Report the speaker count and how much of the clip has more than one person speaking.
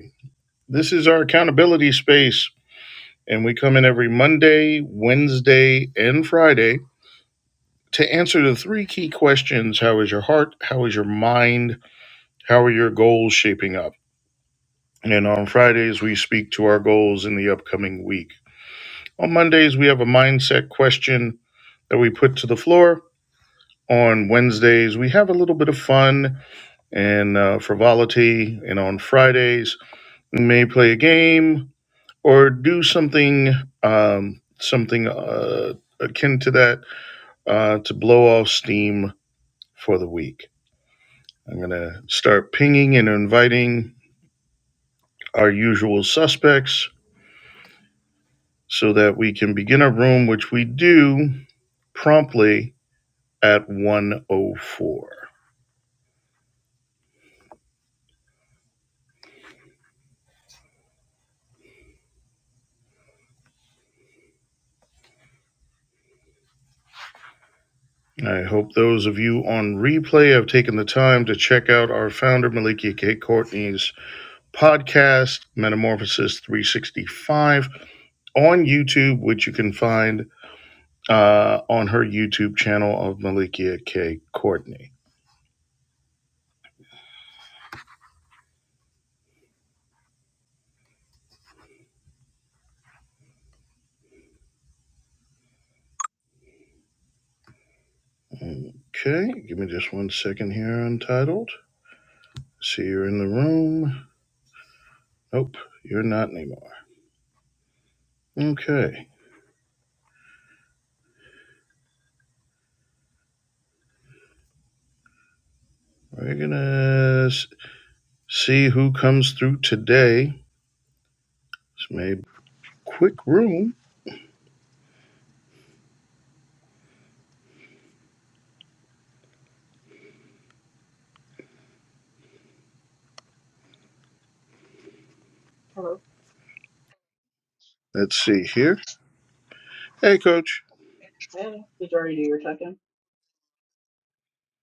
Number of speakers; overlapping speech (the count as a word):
two, no overlap